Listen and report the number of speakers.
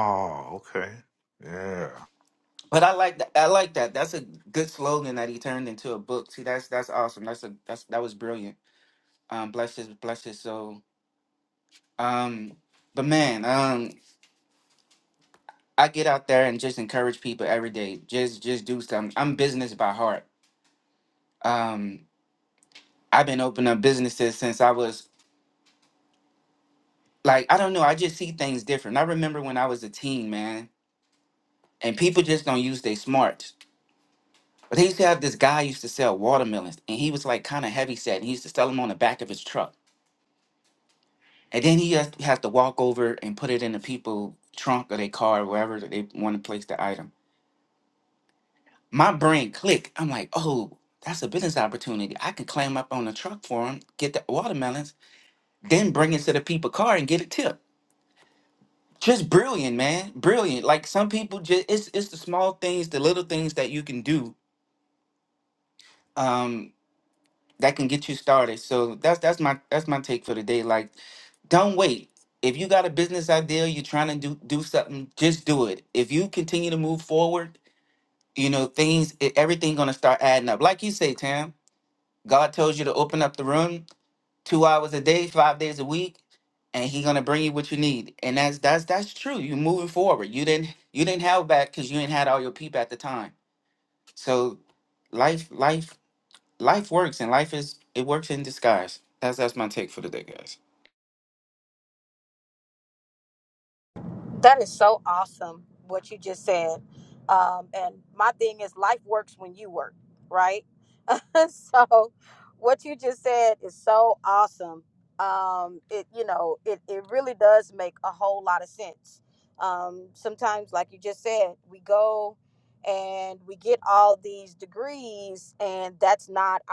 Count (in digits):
3